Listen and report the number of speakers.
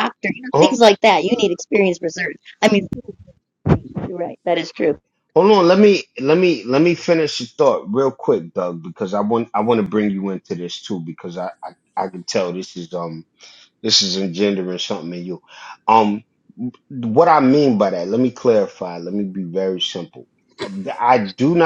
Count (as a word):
two